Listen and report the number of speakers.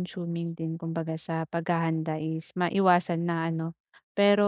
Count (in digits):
1